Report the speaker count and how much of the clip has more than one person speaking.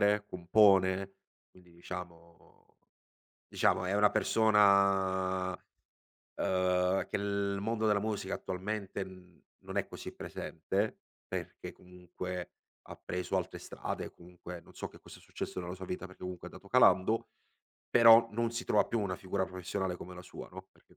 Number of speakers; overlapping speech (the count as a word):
one, no overlap